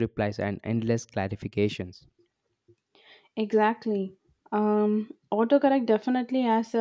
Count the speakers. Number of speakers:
2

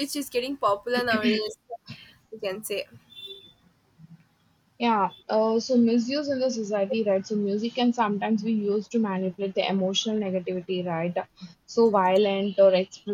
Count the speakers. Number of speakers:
2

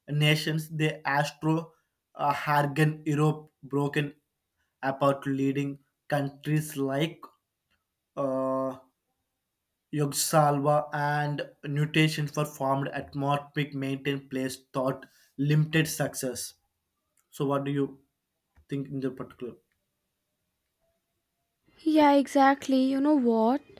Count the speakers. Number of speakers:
2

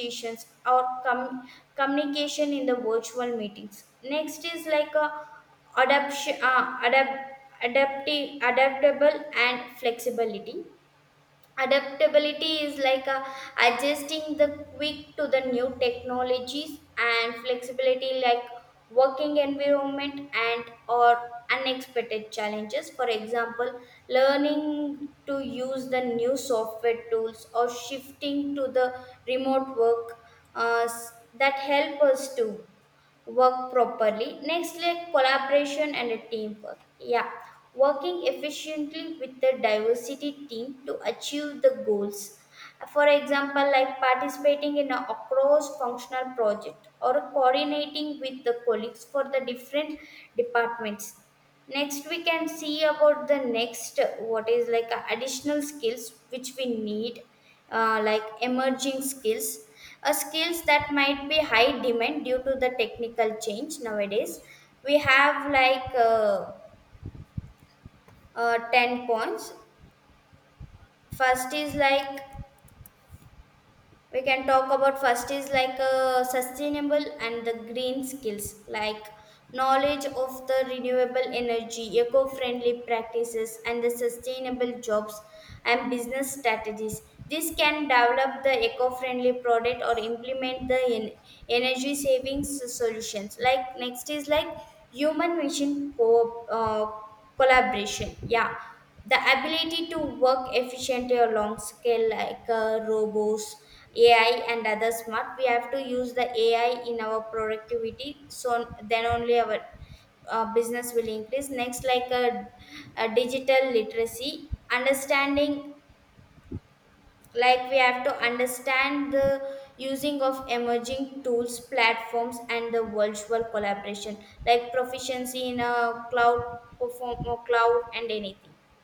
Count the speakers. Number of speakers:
1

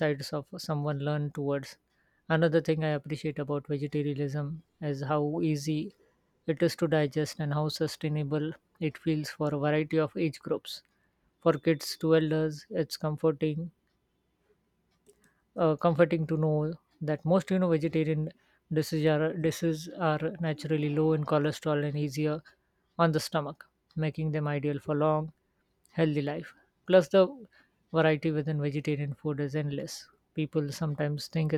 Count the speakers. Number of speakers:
1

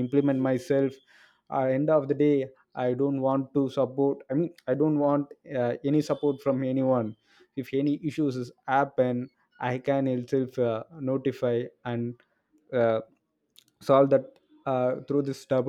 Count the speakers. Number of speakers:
1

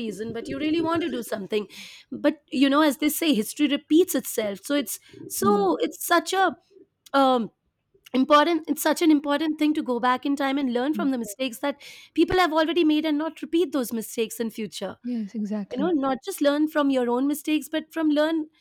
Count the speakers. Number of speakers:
2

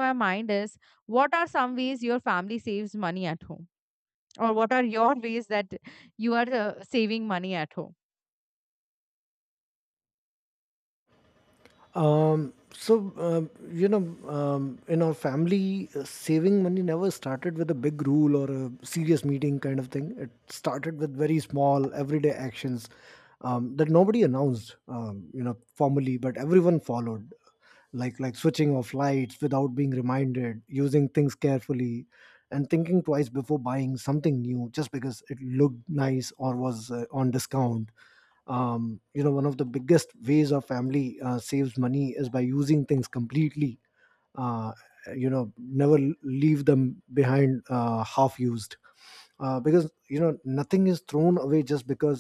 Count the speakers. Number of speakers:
2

